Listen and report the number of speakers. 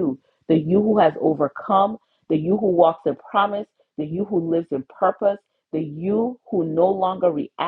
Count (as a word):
one